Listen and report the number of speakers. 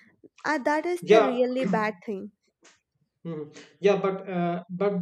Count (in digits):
2